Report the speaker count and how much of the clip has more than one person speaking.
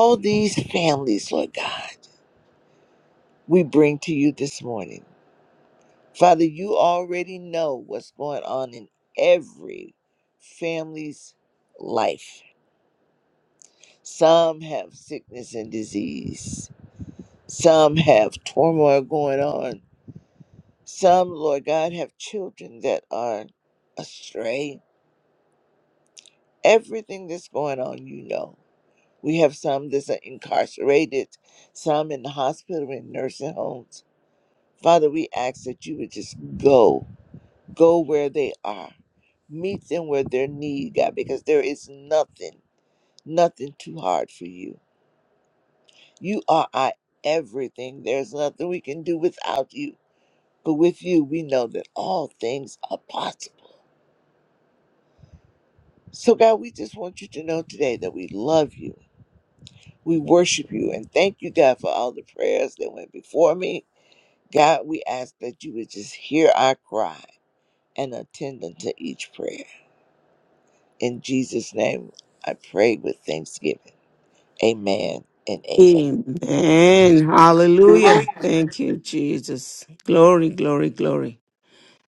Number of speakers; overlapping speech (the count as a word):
two, under 1%